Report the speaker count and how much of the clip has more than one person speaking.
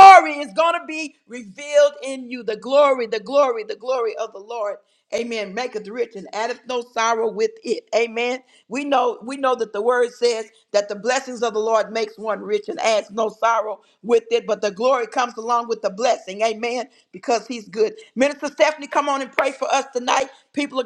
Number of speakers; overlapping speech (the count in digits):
1, no overlap